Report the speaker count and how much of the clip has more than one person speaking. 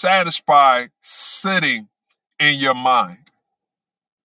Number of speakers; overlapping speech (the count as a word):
one, no overlap